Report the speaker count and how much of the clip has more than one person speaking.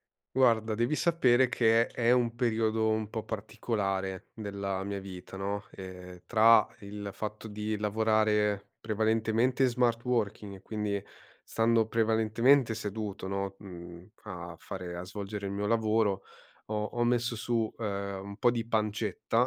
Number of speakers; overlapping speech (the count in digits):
1, no overlap